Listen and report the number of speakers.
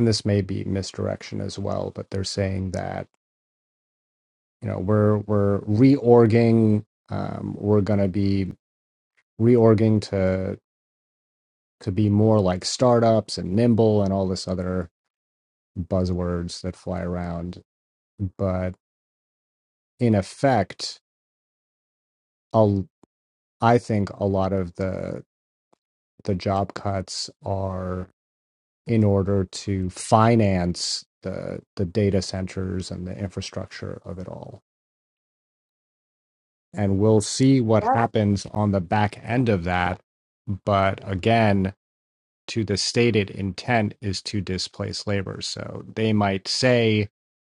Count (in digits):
1